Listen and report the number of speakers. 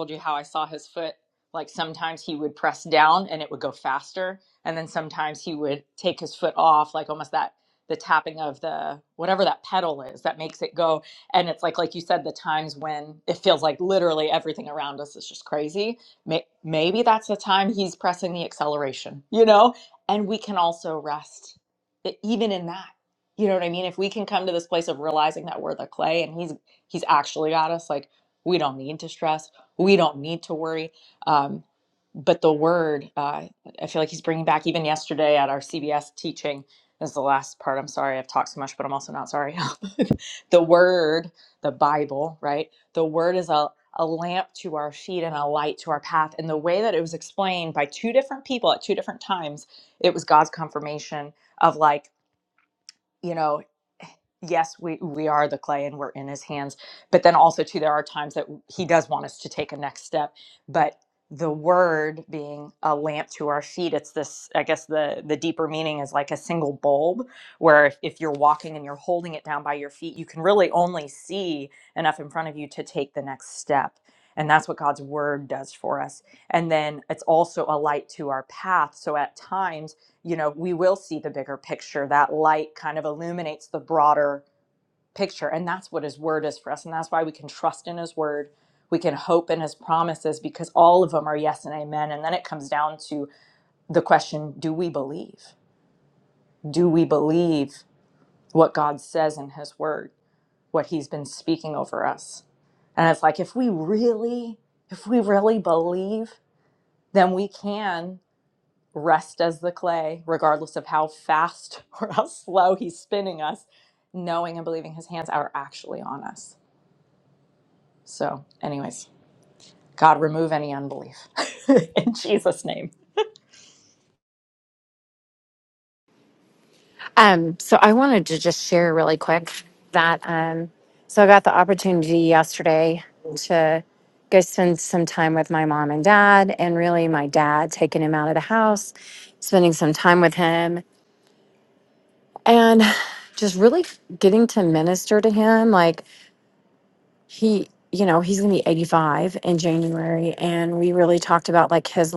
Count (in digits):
2